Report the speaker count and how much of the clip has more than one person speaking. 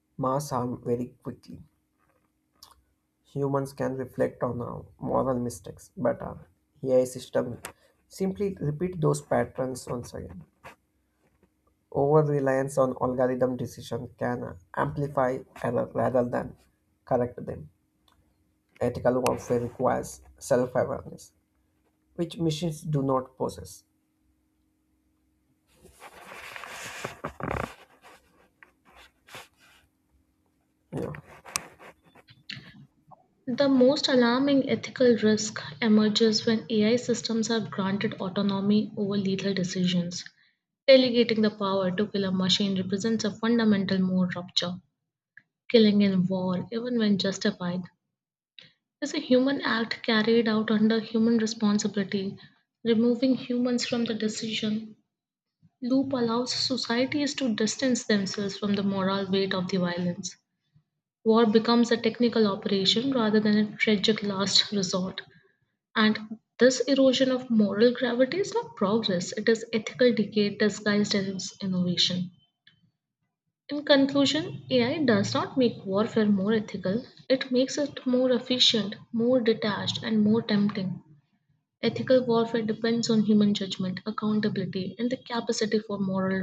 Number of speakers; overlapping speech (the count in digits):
2, no overlap